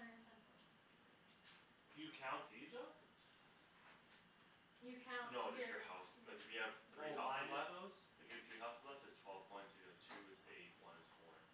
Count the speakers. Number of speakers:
three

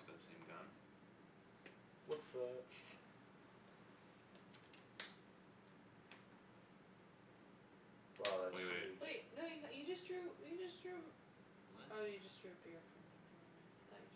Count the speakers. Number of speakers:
three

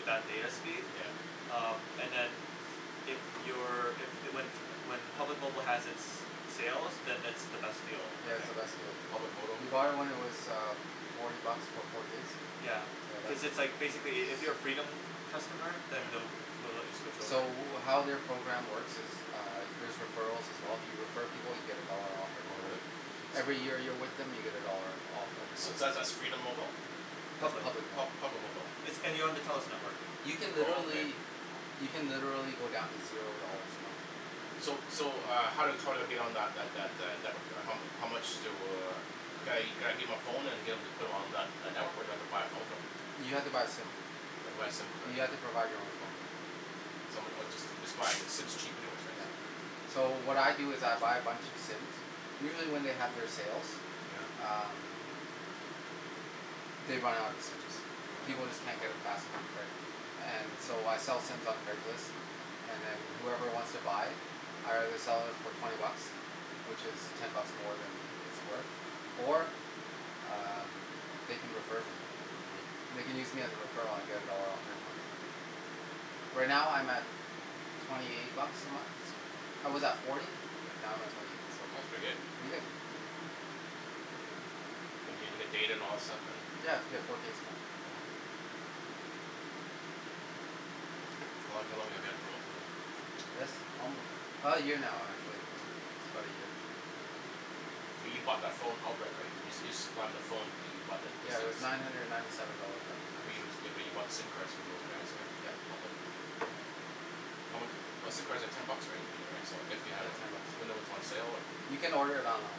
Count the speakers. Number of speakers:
three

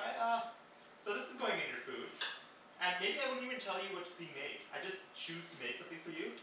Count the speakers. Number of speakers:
one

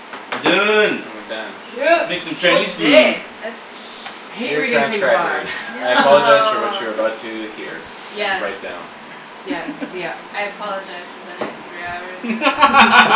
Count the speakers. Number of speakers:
four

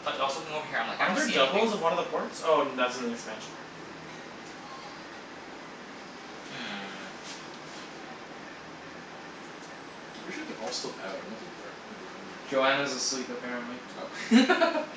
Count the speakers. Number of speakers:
four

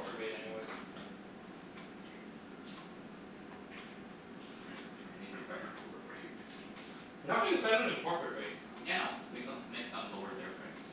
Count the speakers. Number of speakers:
two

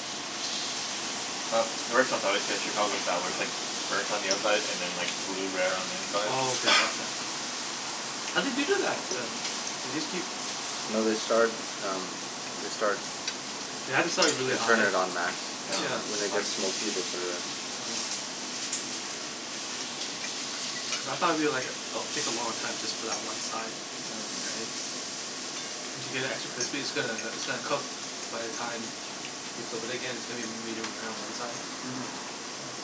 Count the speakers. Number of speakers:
three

